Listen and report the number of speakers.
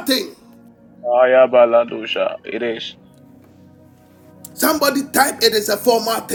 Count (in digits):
2